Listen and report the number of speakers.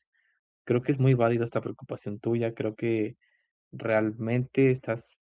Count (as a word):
one